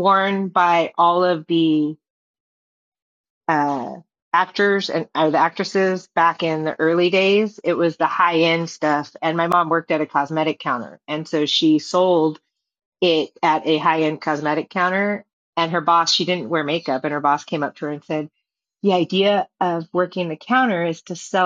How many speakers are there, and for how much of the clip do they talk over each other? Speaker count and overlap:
one, no overlap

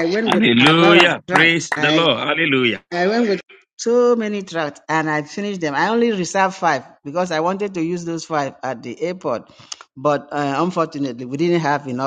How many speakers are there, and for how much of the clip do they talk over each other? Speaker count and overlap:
two, about 15%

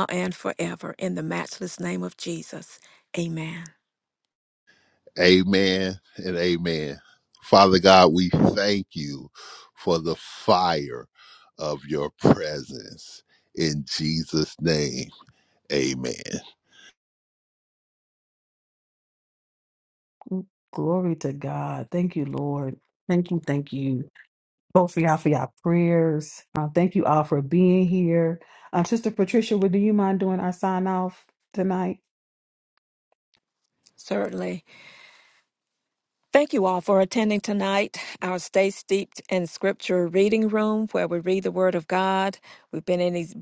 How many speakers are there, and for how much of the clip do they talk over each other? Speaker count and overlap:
three, no overlap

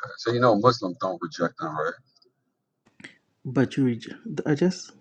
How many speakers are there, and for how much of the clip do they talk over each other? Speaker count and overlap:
two, no overlap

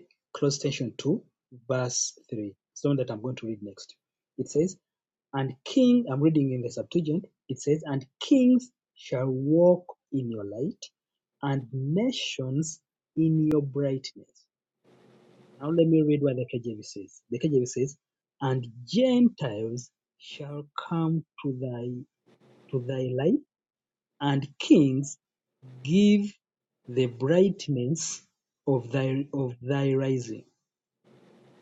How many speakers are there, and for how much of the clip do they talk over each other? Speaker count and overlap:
one, no overlap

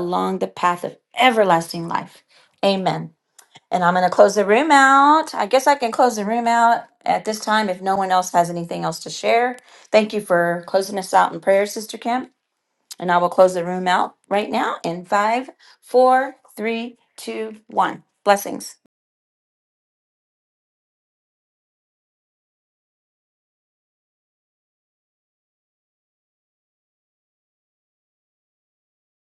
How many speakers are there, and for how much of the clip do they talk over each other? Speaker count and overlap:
one, no overlap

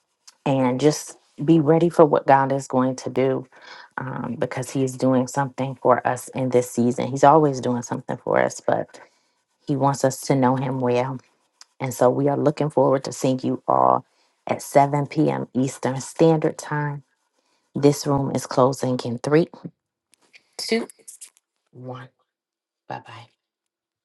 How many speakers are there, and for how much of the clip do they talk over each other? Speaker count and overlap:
one, no overlap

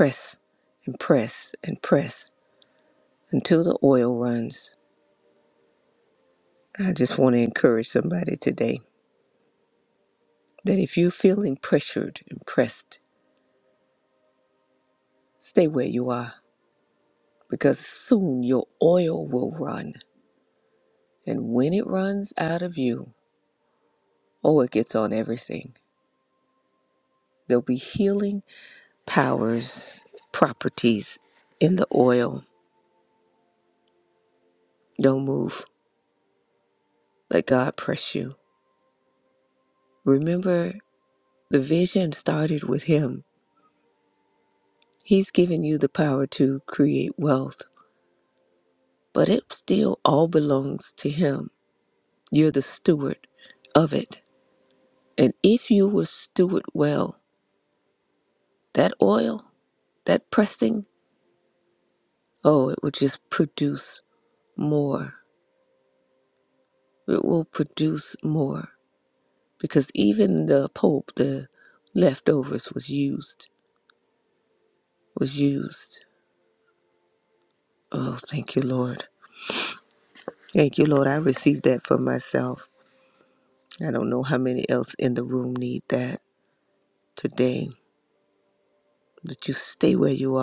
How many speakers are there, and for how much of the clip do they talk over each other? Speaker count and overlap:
one, no overlap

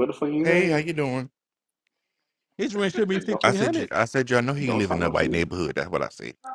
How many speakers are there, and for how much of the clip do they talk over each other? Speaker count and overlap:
three, about 29%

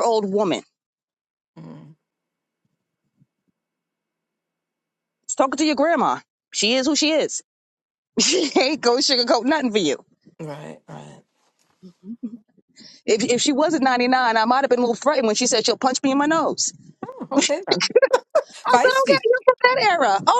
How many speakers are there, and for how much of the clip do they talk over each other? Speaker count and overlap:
two, about 2%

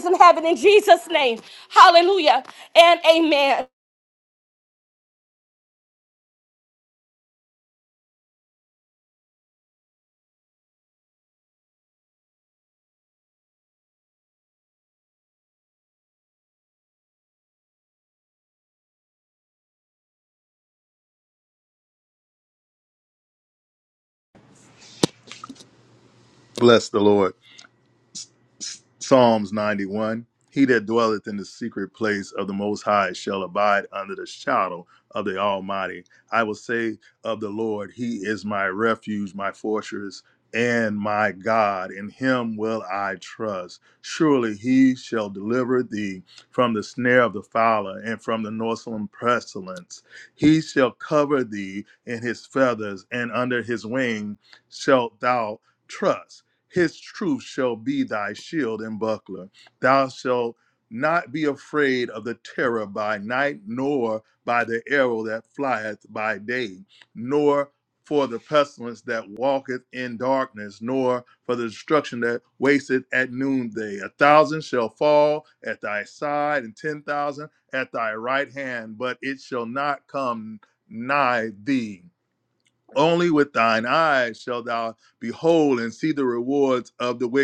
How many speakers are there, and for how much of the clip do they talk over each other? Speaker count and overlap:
two, no overlap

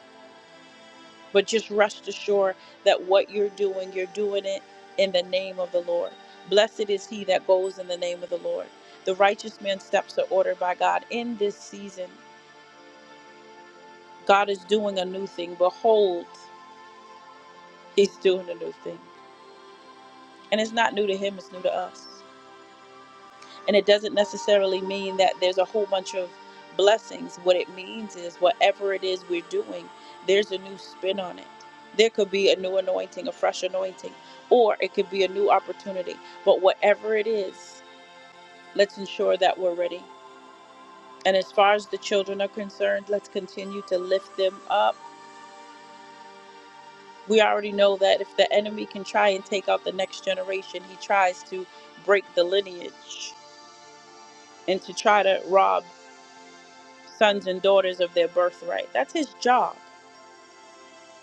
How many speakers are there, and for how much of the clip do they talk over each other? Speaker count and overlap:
one, no overlap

